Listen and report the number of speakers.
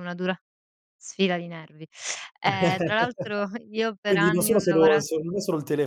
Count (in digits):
2